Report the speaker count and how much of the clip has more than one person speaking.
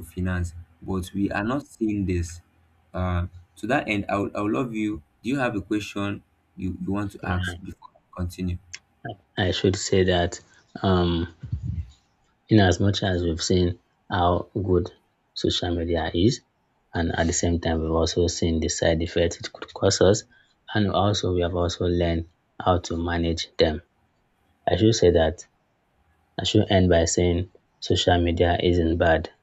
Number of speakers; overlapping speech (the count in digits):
2, about 1%